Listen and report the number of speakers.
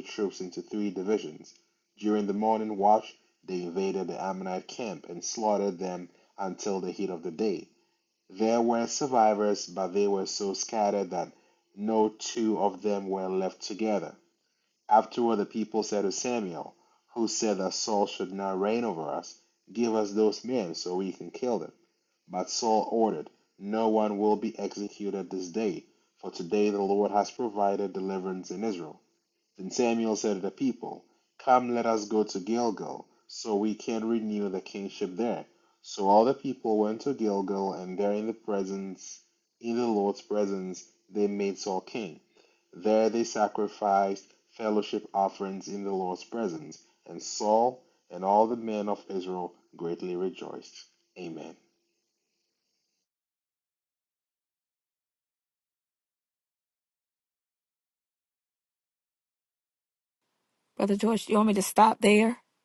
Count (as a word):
two